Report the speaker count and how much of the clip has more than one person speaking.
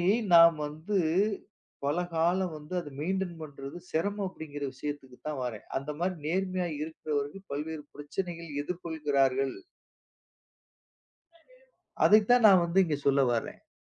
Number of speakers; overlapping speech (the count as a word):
one, no overlap